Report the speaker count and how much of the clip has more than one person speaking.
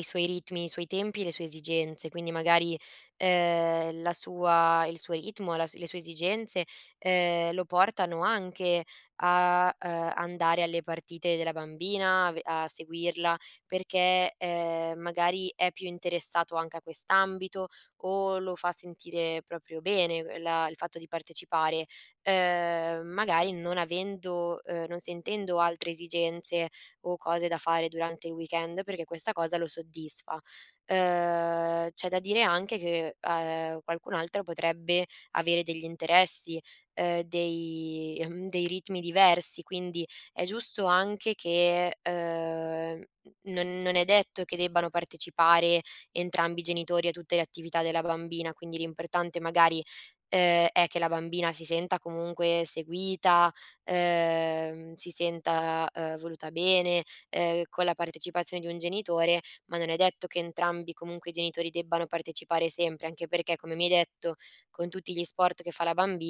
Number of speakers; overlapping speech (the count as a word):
one, no overlap